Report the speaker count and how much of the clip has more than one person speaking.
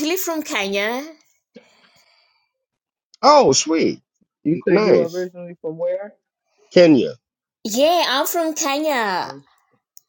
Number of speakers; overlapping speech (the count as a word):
three, about 5%